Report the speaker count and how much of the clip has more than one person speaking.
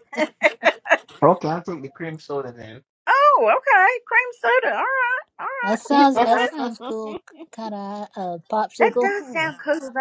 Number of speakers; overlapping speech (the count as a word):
three, about 15%